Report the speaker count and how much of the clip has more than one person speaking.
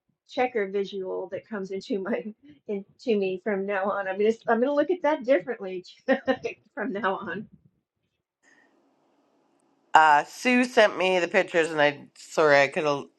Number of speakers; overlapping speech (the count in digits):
2, no overlap